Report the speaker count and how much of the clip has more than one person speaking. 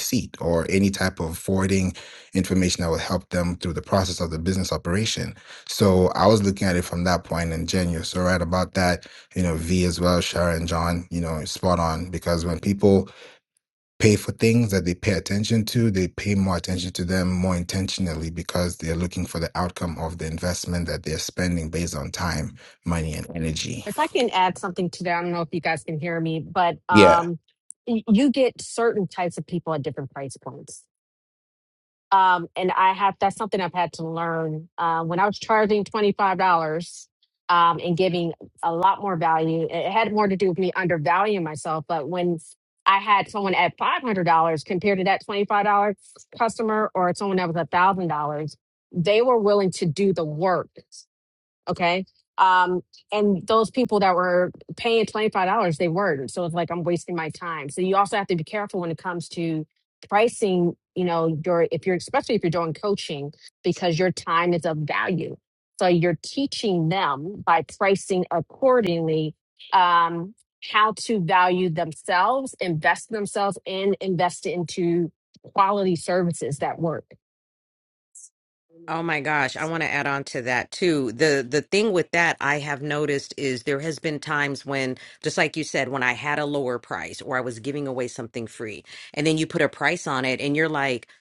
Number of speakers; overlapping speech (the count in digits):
3, no overlap